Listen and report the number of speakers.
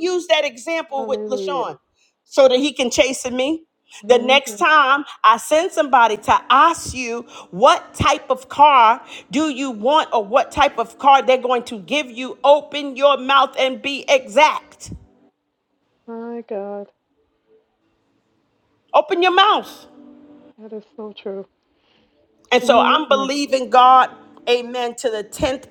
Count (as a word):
two